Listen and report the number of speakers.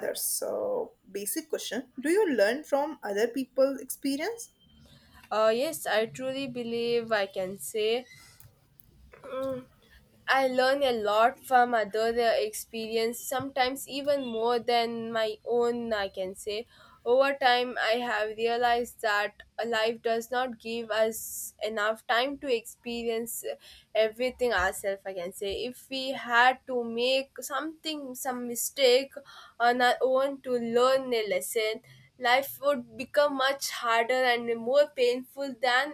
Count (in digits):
2